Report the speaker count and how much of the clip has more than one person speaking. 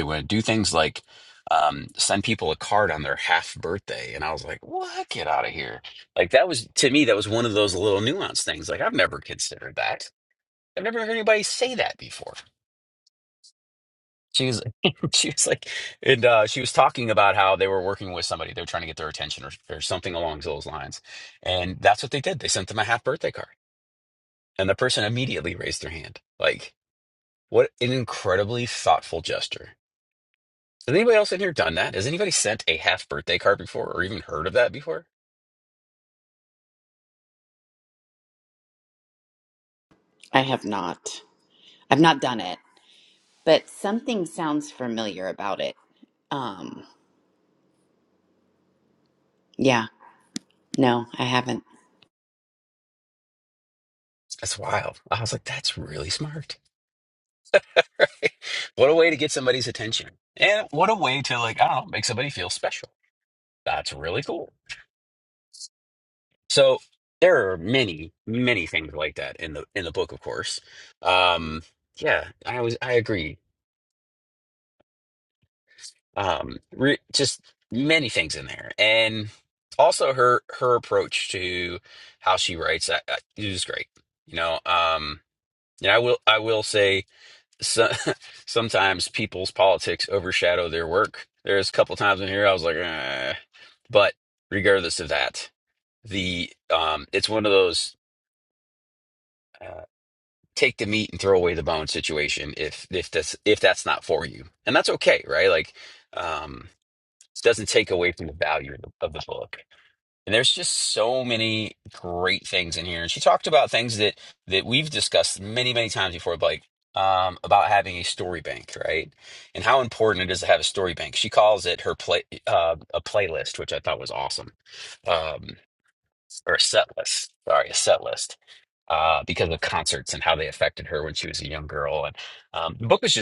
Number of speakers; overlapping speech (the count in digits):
2, no overlap